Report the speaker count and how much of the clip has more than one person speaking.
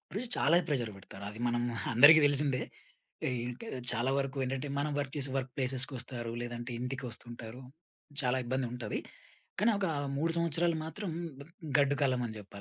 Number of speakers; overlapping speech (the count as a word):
one, no overlap